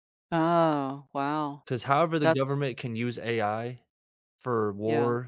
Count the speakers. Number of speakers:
2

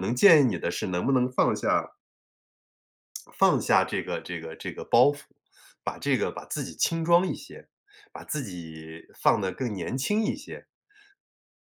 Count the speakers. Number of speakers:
1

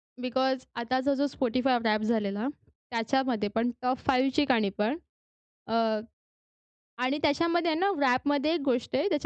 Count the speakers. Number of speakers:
1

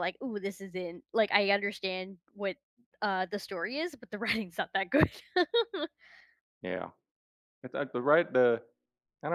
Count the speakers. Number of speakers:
2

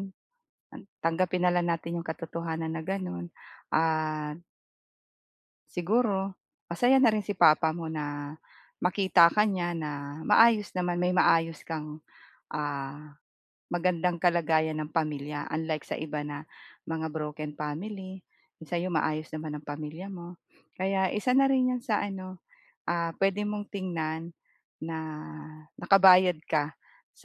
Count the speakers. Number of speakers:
1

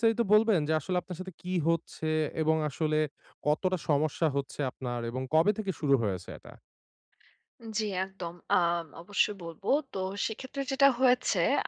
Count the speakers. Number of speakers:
2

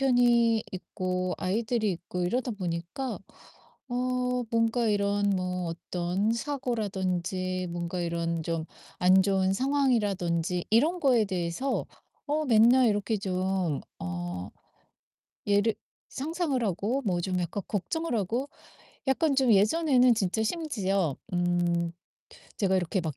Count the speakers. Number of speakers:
1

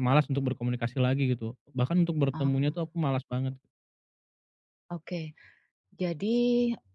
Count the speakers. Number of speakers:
2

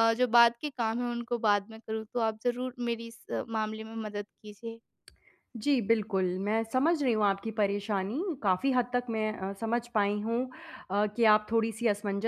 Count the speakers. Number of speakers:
2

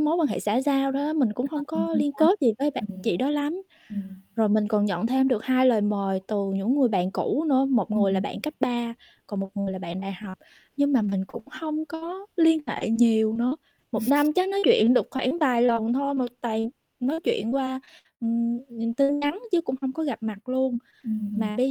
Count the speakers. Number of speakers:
2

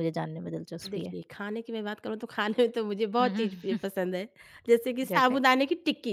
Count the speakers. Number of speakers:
2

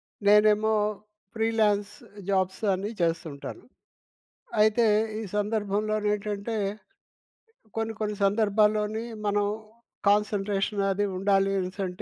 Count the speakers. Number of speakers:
1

